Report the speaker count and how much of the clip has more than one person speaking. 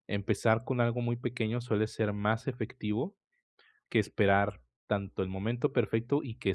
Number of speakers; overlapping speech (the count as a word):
one, no overlap